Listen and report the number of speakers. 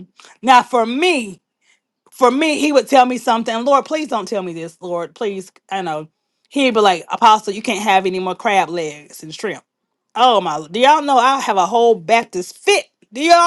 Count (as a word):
one